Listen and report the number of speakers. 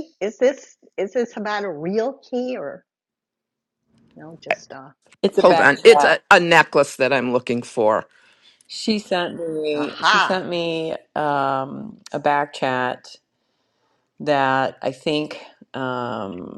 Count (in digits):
3